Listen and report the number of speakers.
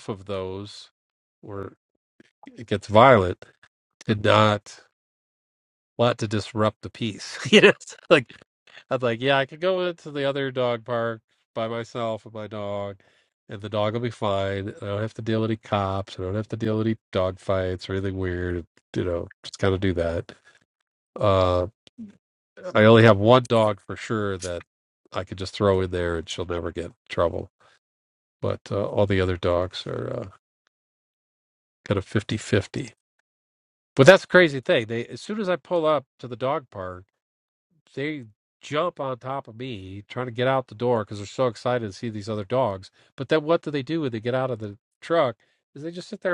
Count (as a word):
one